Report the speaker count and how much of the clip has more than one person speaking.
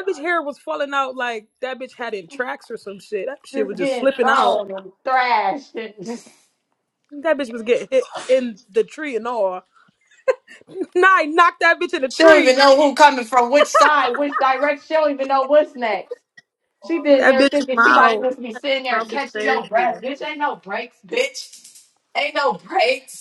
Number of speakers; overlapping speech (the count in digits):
2, about 16%